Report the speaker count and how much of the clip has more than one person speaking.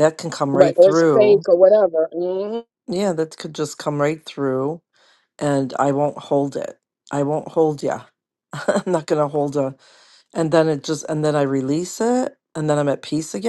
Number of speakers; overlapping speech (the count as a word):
two, about 6%